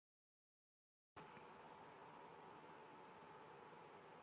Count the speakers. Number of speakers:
0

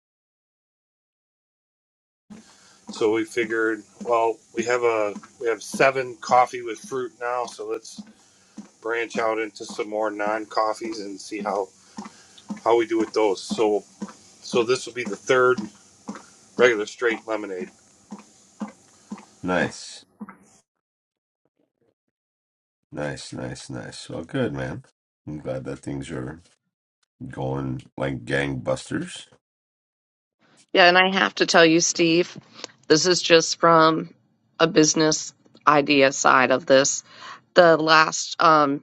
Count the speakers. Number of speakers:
3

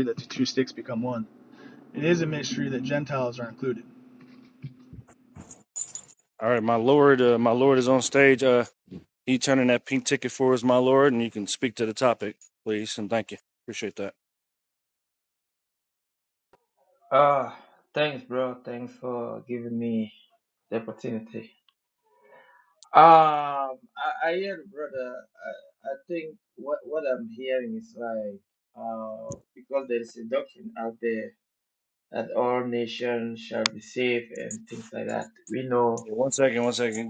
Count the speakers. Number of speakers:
3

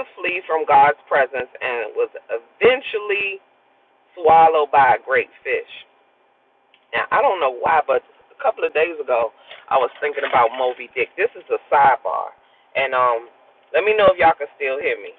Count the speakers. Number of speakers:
1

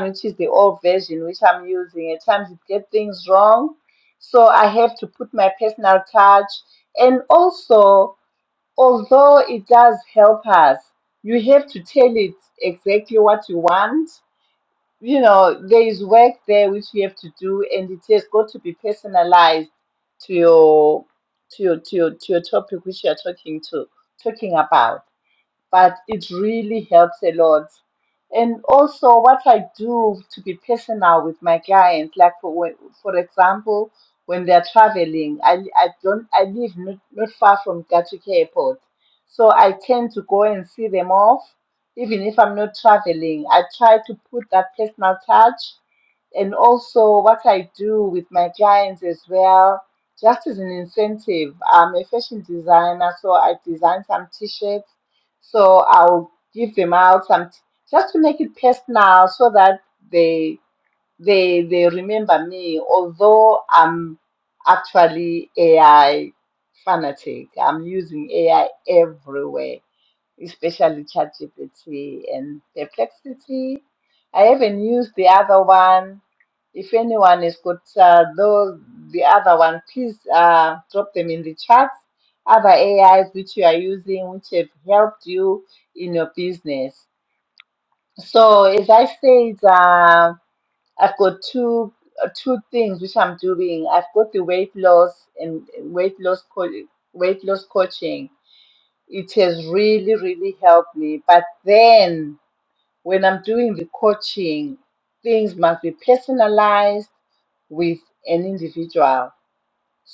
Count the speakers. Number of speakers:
1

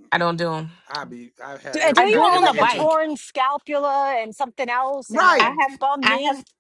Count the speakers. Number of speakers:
3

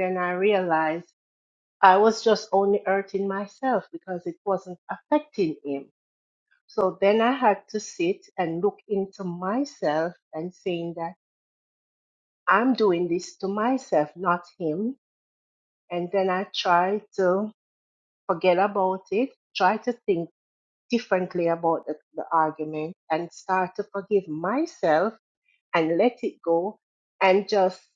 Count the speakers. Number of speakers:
1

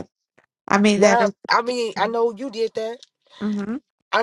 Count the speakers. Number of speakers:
2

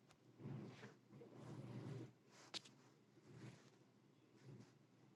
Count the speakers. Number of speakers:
0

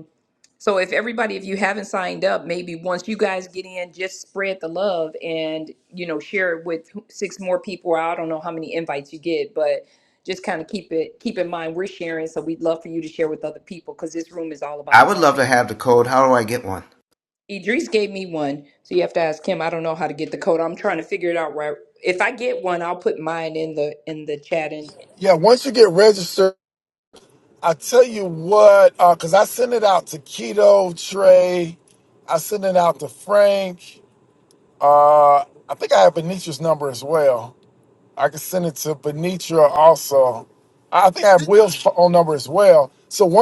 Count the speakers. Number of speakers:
3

